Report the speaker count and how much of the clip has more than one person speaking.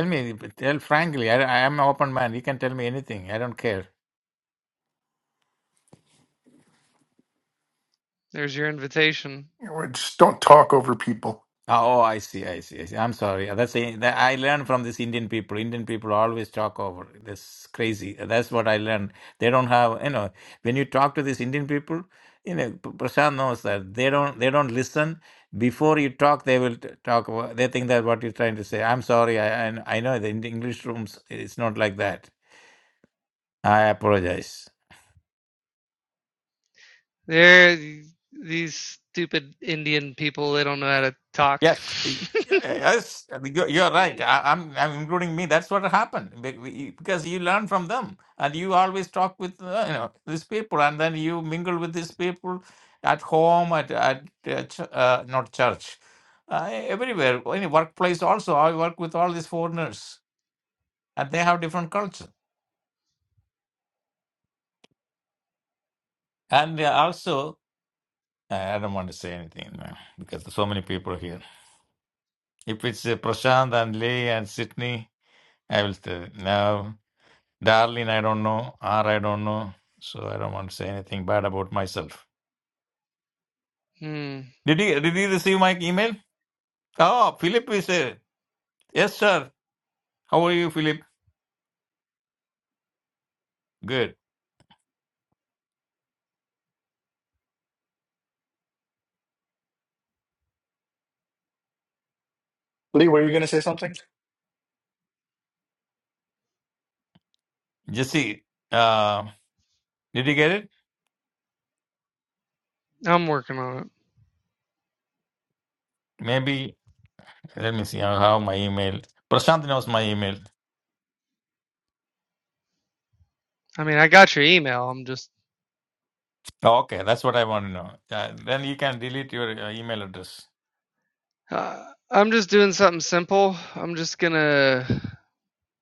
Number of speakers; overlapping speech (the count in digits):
4, under 1%